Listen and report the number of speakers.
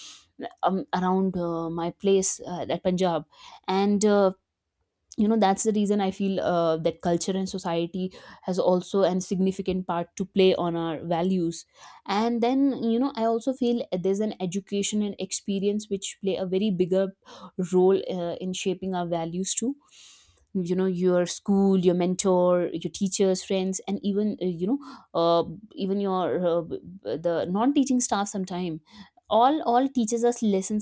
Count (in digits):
1